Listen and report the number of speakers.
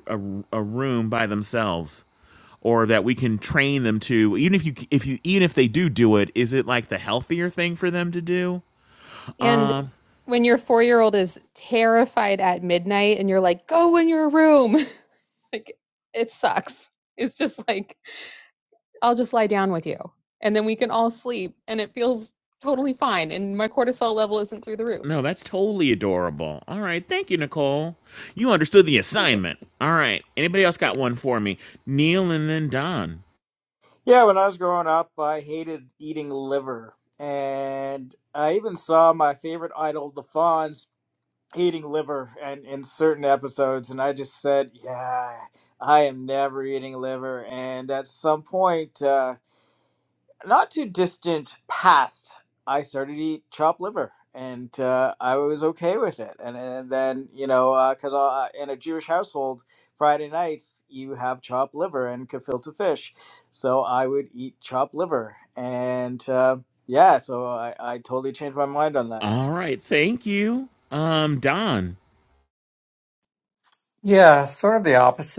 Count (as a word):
four